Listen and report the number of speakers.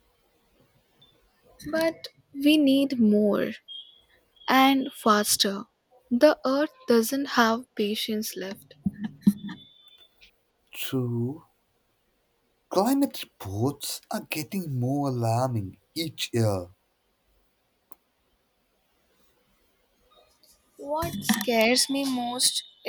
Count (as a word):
two